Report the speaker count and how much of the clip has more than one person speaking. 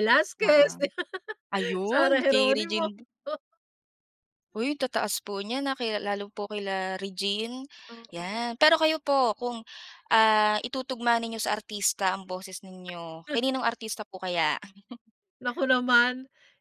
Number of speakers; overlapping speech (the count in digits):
2, about 9%